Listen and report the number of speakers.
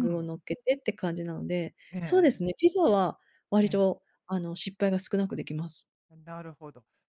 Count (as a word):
two